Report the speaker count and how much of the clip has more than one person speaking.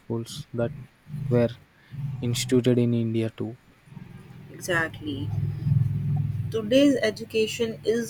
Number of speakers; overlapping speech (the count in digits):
2, no overlap